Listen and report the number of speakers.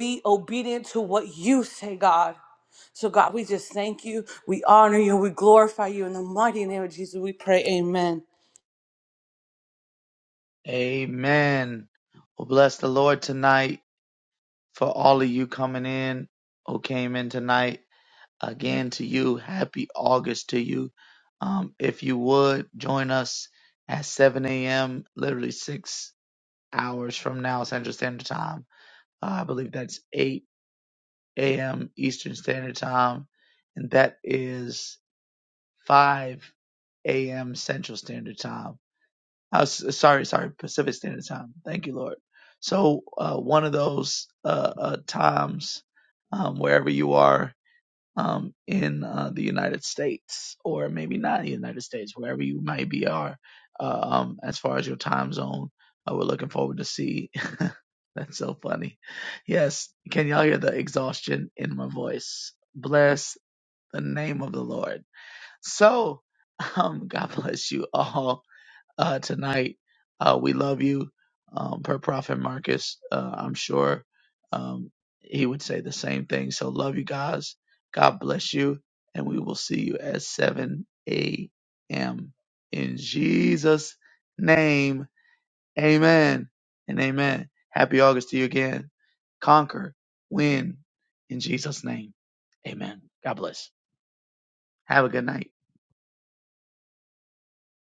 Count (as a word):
two